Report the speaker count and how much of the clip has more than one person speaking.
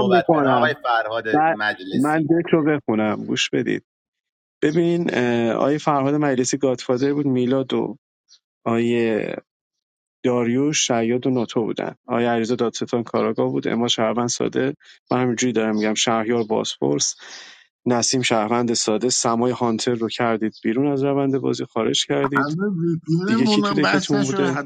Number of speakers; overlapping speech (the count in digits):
3, about 11%